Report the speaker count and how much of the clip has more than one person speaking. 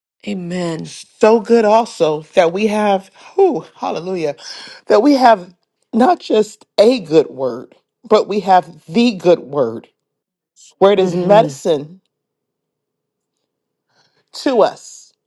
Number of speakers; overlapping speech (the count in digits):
2, about 4%